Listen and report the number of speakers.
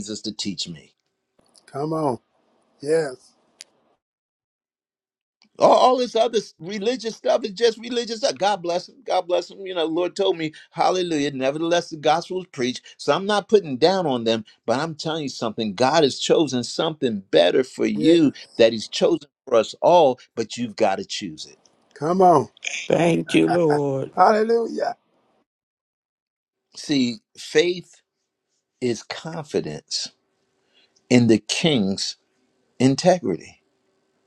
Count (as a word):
three